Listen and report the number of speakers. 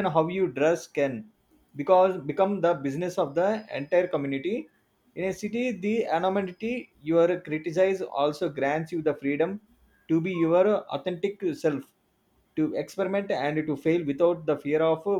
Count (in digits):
1